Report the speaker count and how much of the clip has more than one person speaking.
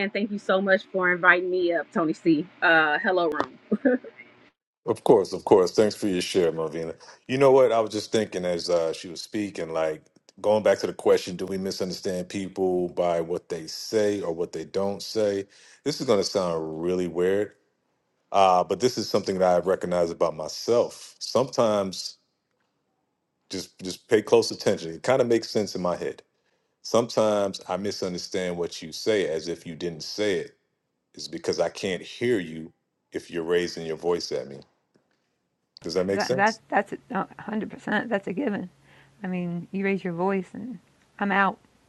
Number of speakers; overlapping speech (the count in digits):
3, about 1%